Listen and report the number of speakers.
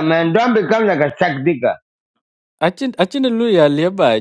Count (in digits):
2